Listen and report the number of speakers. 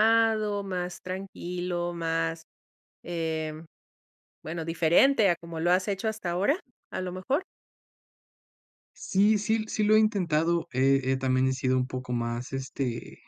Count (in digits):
2